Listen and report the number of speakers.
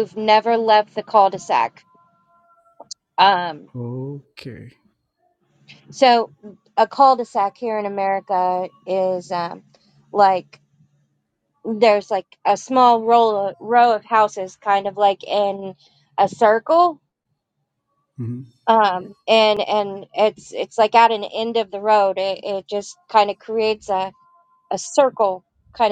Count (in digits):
2